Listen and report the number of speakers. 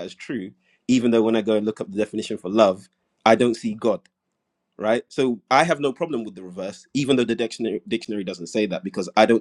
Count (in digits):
1